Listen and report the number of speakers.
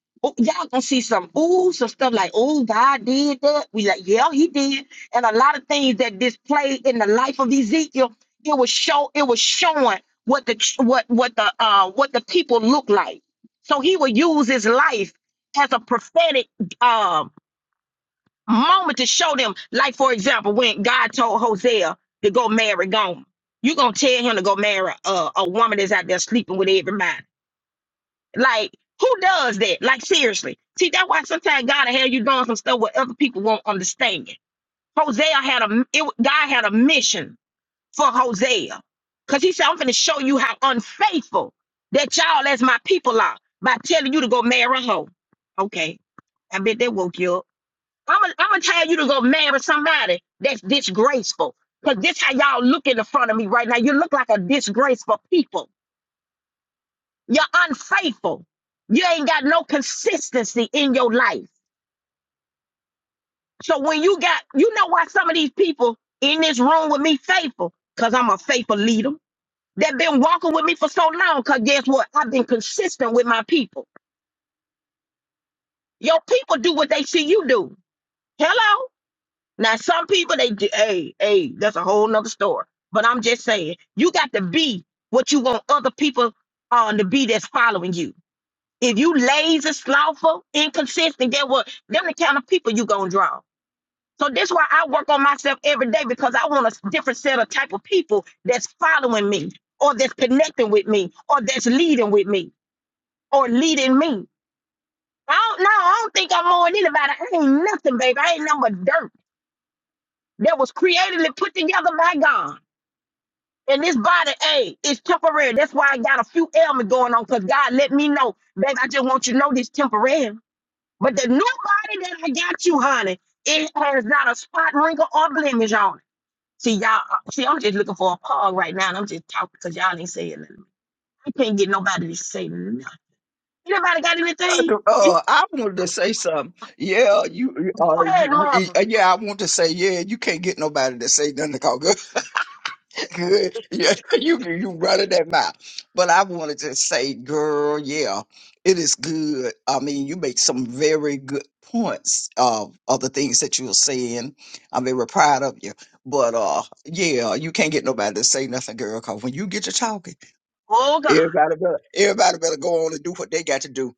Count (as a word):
two